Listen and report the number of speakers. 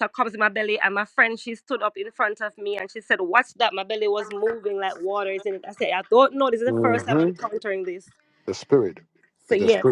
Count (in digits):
2